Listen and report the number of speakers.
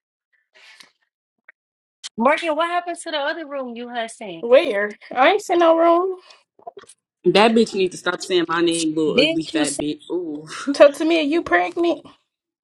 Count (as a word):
three